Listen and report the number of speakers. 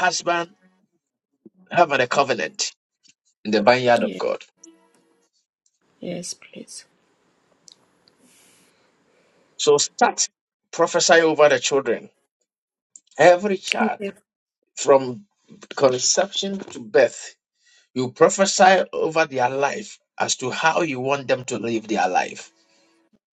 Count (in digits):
2